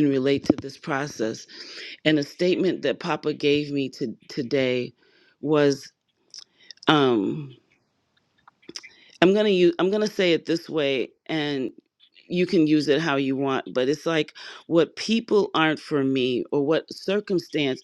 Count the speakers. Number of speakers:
1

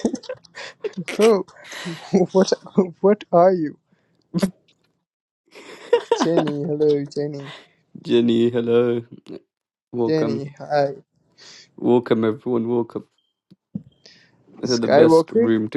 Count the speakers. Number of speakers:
2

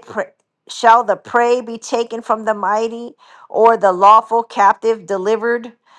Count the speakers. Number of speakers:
1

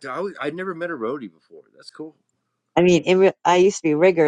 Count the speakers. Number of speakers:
2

